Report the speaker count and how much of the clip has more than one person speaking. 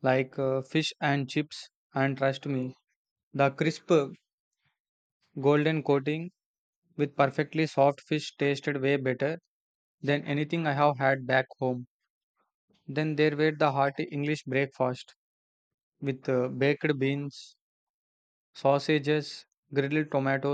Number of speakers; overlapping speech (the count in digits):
1, no overlap